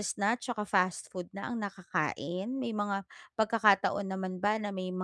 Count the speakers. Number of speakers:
one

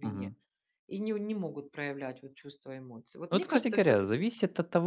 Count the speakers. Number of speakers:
two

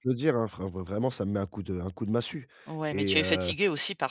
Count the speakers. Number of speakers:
two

